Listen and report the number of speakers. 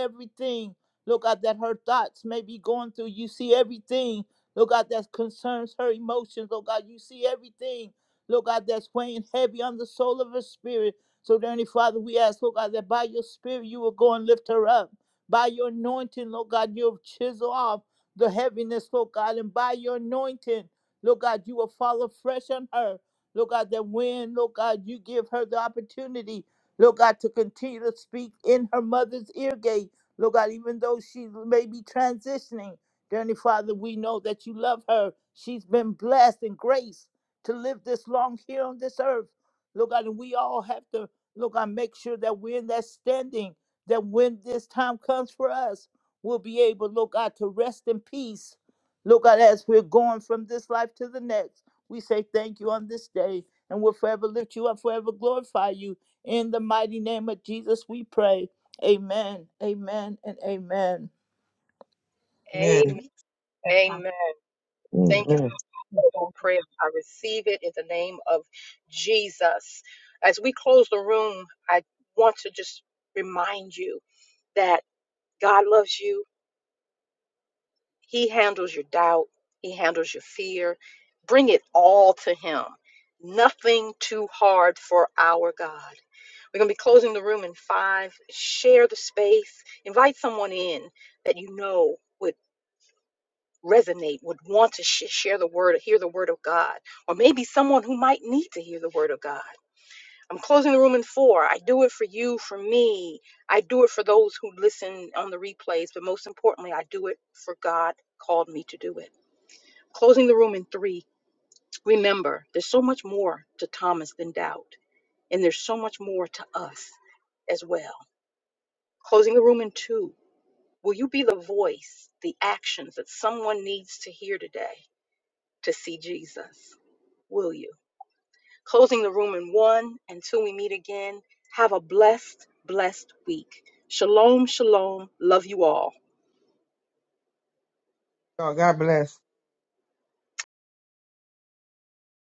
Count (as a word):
three